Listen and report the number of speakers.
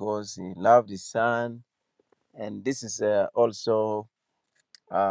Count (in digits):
1